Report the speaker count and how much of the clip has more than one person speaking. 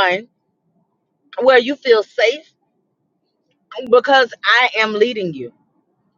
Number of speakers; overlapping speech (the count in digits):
1, no overlap